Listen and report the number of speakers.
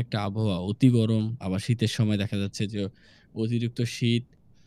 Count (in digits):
1